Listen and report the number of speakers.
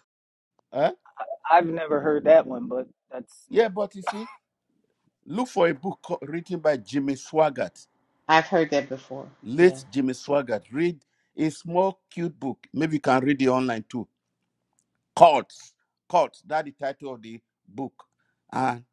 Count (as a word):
three